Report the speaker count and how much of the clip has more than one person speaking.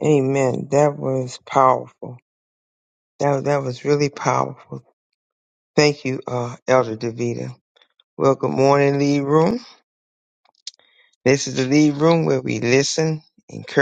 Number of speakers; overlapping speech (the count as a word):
one, no overlap